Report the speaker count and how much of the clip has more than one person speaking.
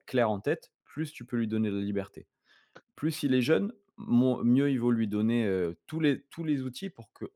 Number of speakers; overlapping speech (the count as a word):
one, no overlap